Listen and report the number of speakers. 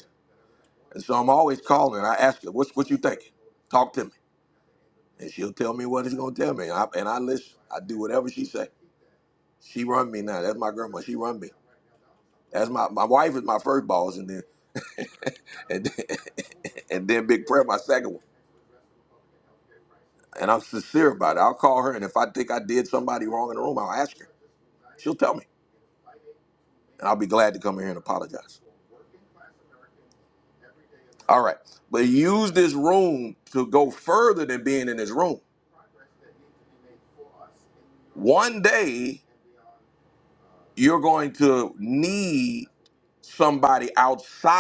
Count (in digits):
1